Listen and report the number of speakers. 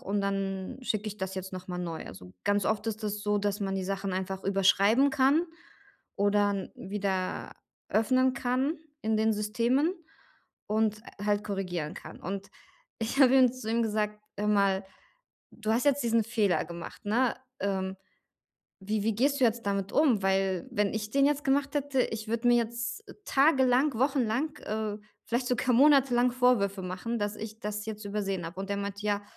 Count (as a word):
one